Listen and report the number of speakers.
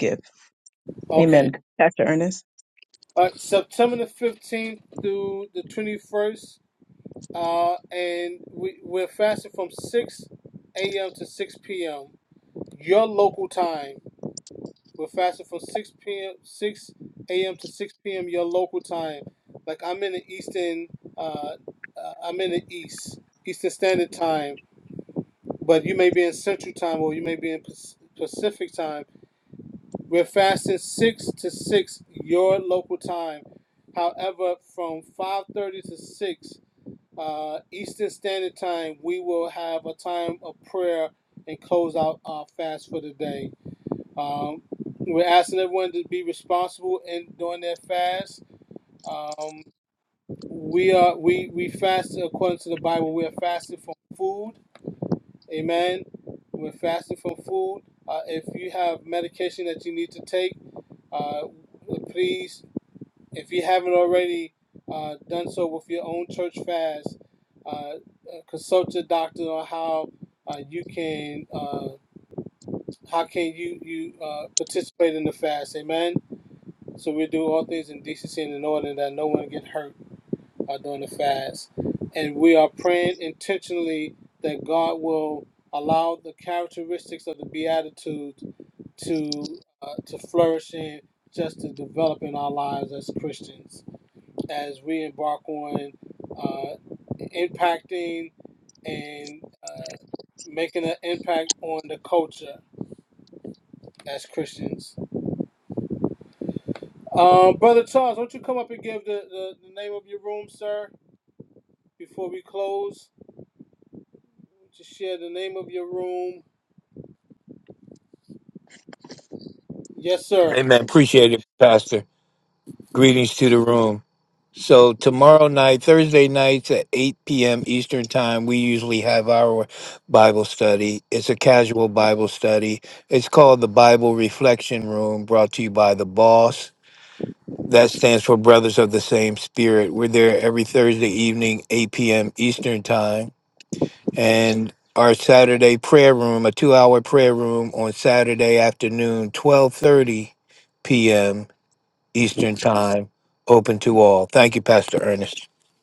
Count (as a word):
three